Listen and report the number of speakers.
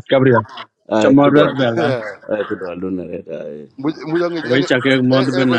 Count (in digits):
3